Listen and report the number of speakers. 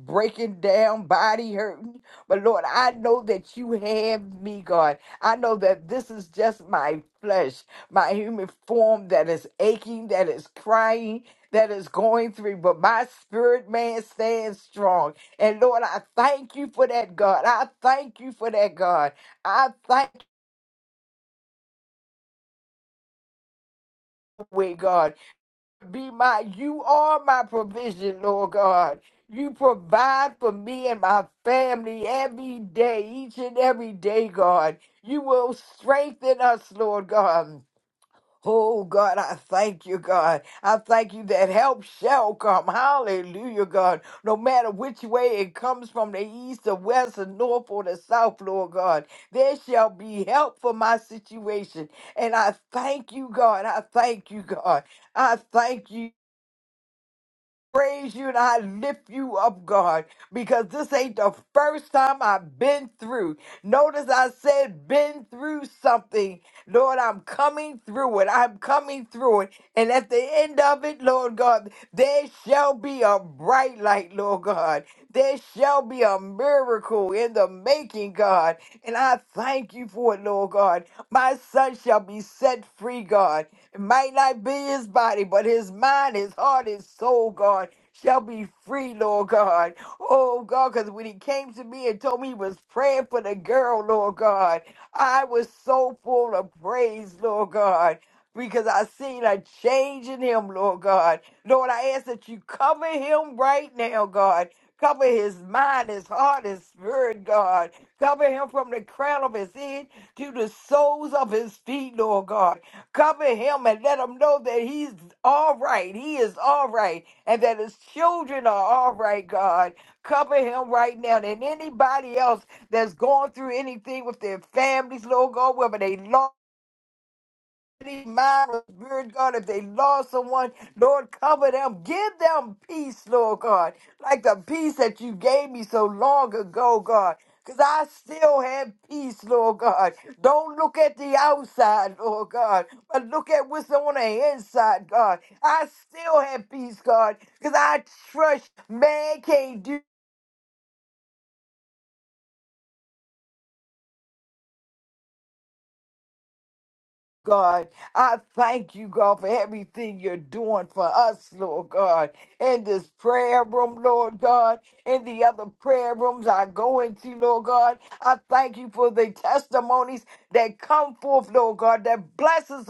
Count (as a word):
one